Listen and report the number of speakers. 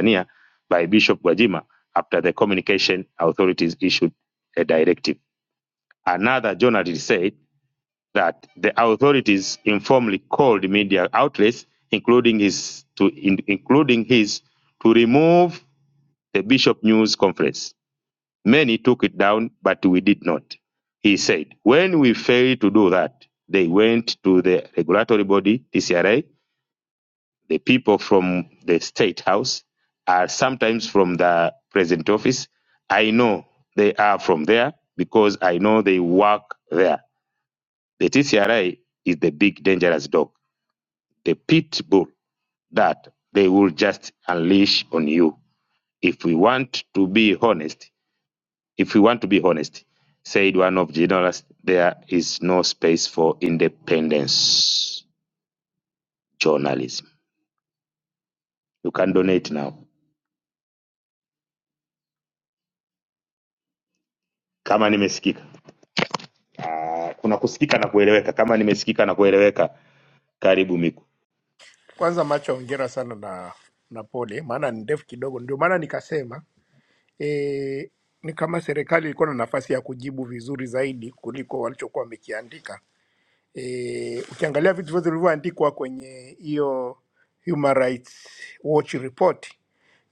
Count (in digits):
2